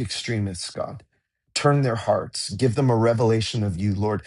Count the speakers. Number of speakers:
one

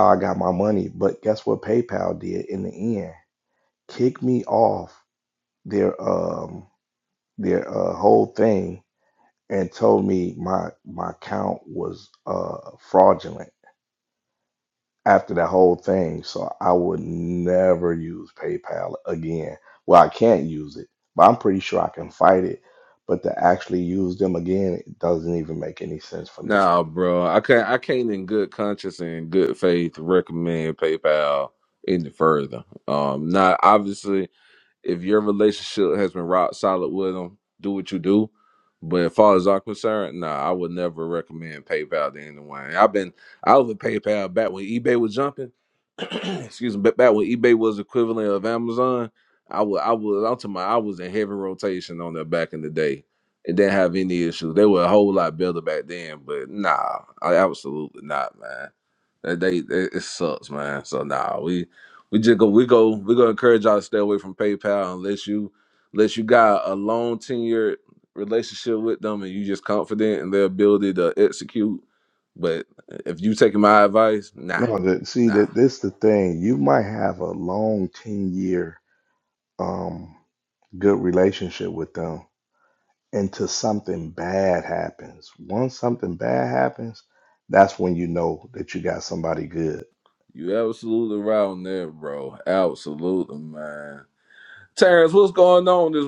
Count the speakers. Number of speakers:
two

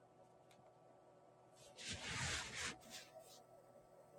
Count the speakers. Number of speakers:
zero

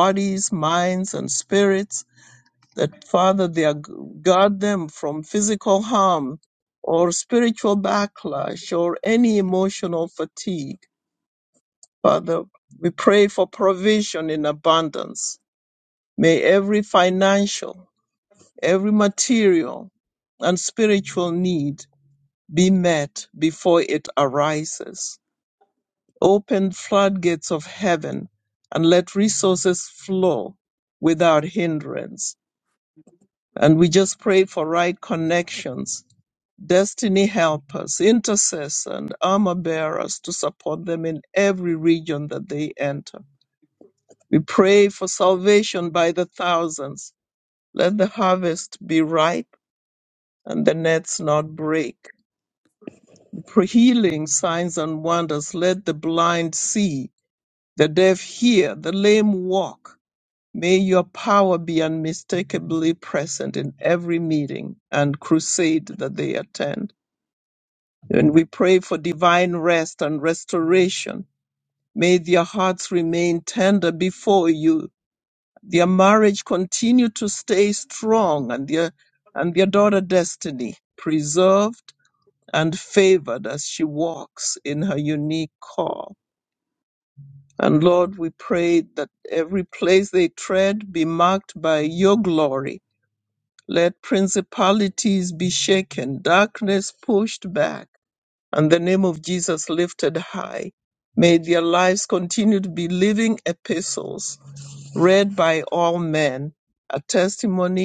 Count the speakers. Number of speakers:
one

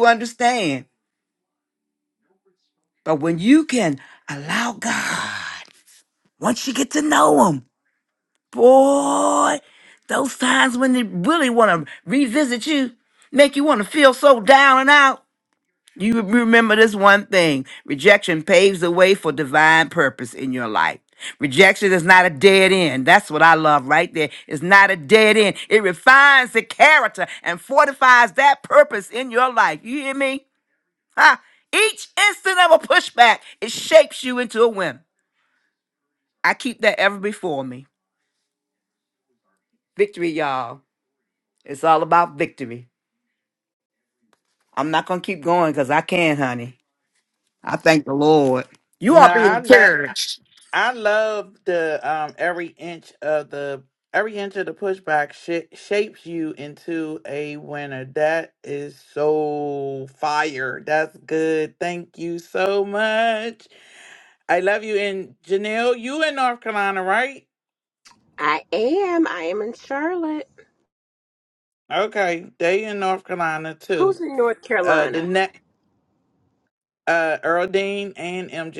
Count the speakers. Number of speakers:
three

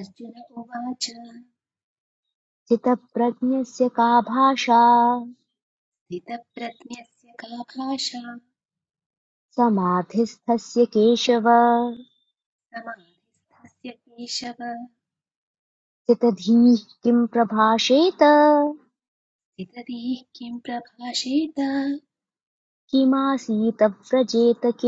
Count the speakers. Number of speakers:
two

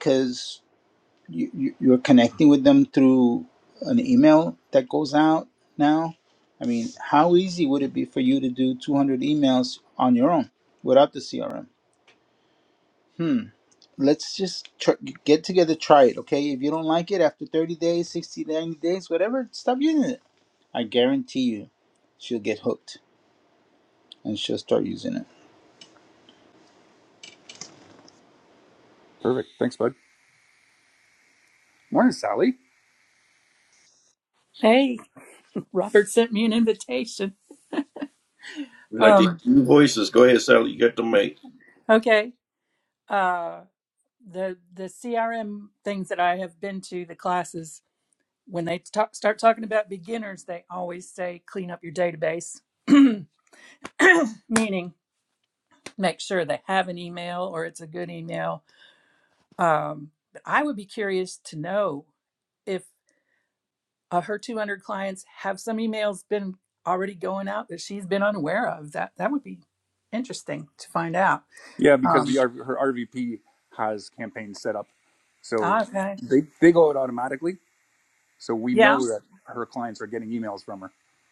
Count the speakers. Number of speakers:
four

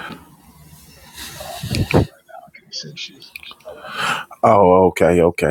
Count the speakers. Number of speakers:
two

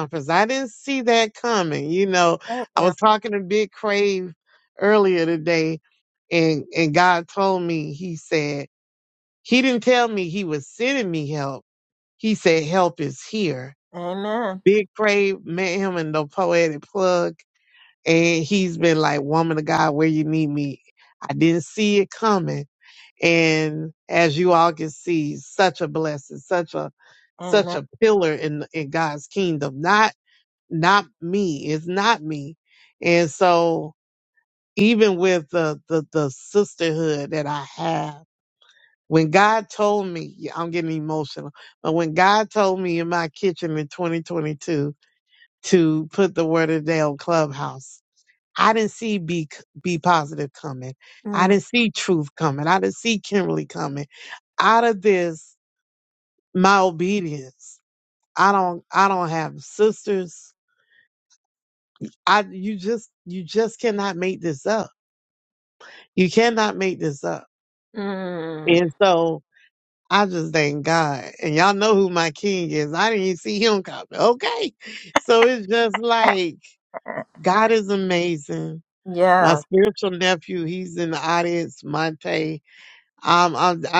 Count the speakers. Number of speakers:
two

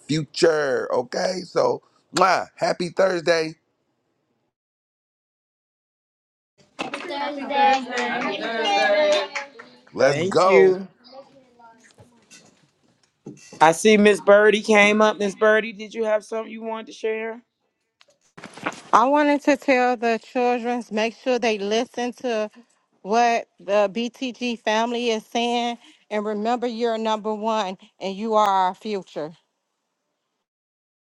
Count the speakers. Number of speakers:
three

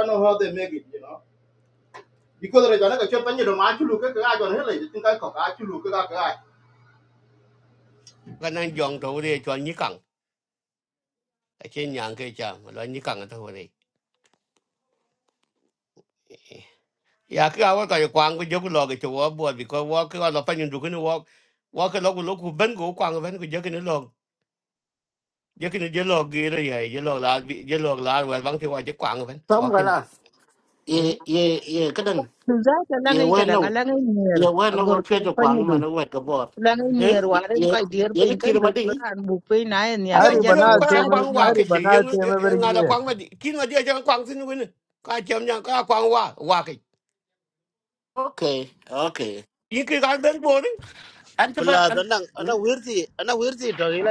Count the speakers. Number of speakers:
six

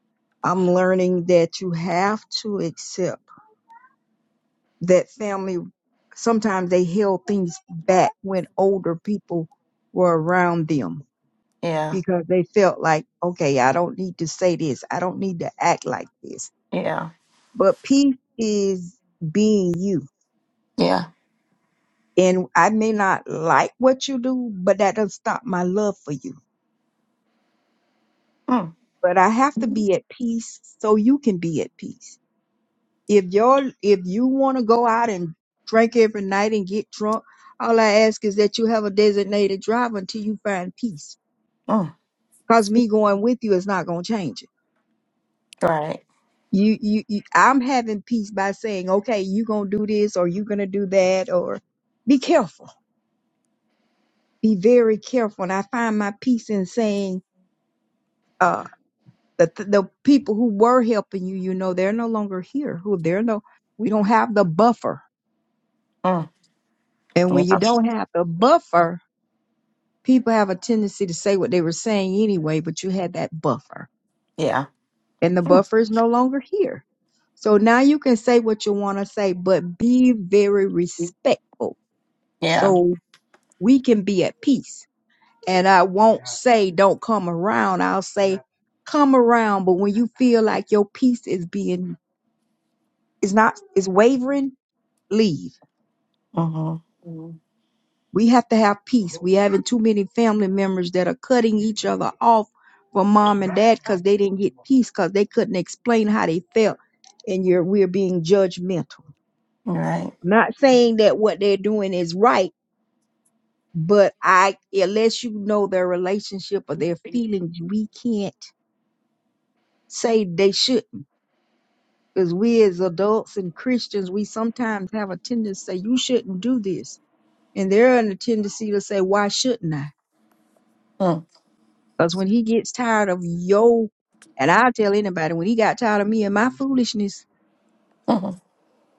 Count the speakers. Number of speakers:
two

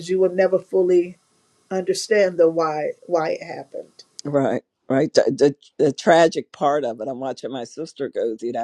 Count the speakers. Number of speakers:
two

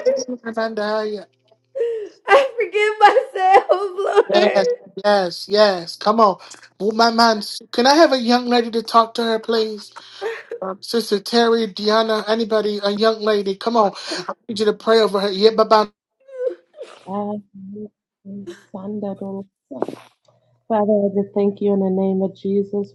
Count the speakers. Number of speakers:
three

